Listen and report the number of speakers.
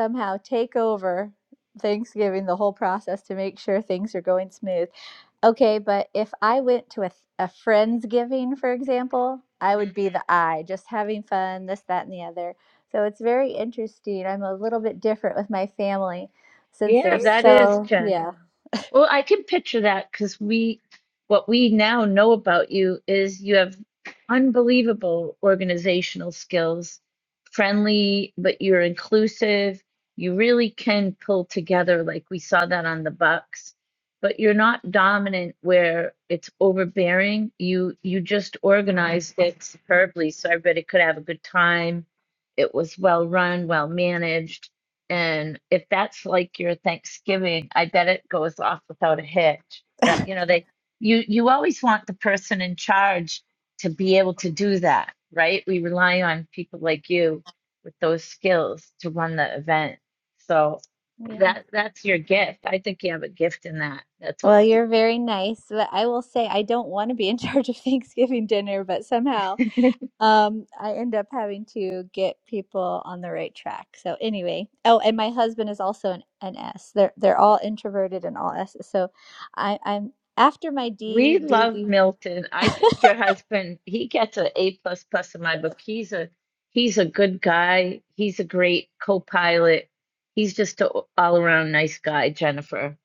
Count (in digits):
2